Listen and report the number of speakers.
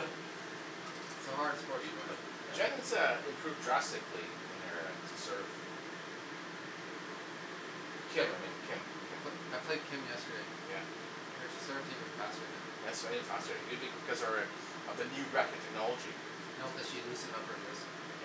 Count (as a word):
two